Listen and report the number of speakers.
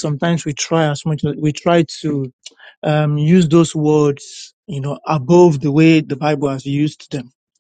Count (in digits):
1